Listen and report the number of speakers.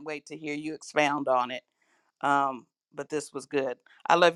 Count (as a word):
one